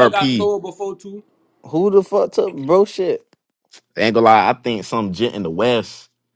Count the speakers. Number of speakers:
3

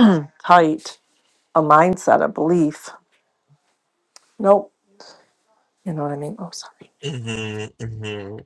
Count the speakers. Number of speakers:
2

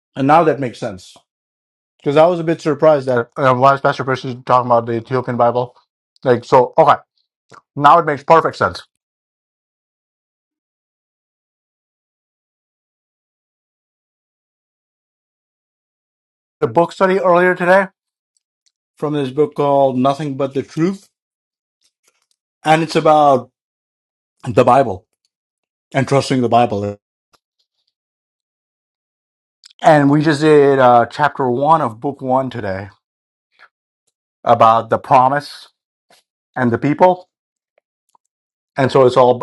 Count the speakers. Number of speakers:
1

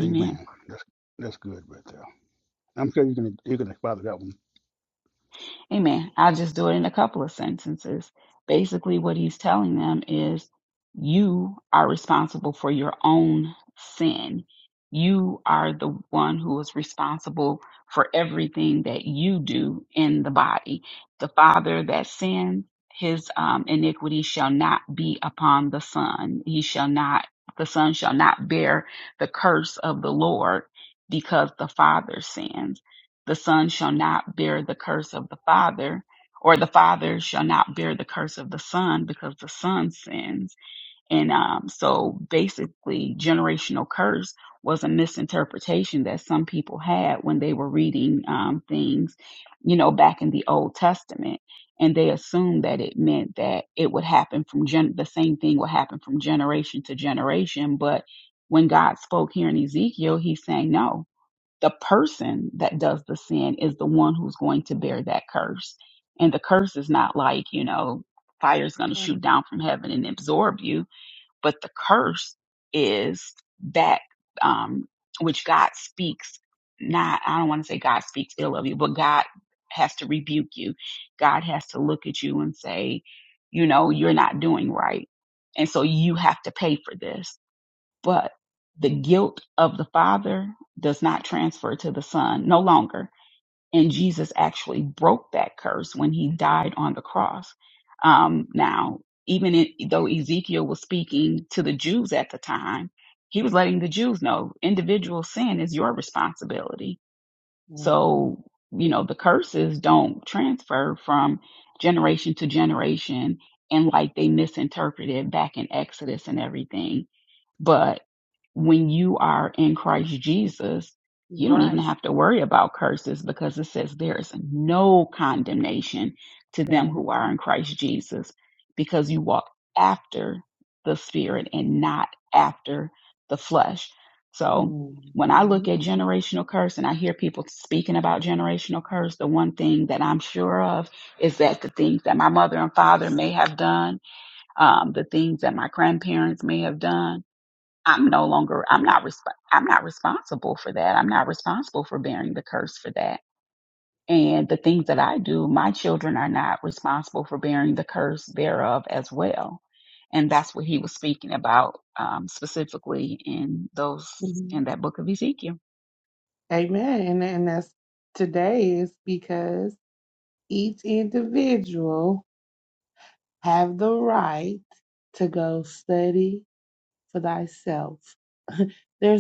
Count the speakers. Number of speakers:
3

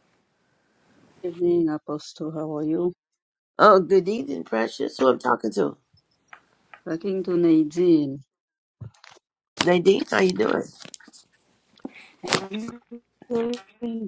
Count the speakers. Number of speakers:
2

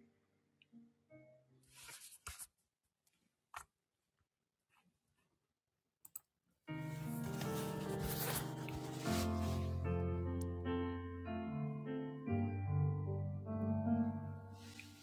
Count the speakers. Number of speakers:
0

